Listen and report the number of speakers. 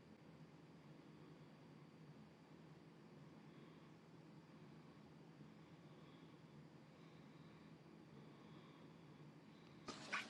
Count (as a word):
zero